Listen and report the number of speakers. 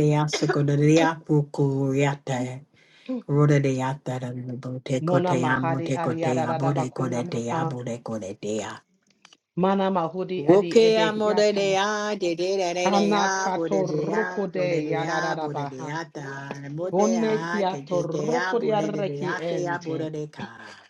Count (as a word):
two